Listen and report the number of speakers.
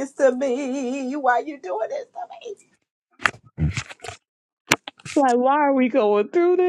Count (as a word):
two